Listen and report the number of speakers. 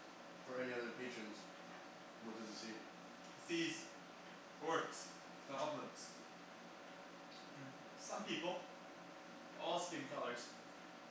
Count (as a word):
two